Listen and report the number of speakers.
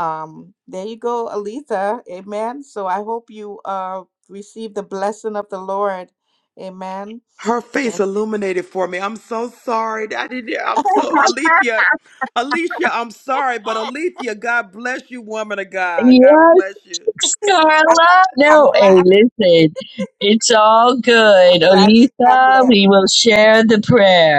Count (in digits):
3